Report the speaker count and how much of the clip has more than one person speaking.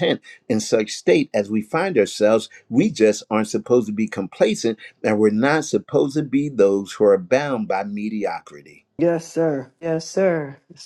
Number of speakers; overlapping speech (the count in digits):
2, no overlap